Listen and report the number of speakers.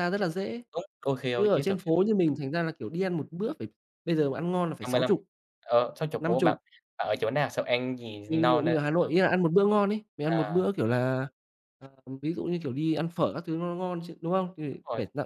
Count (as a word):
two